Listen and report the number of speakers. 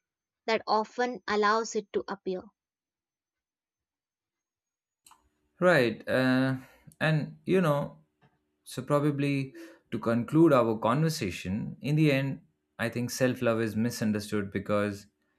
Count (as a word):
two